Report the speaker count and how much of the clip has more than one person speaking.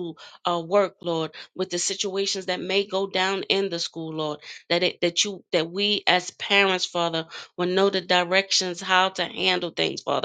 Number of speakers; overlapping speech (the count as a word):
one, no overlap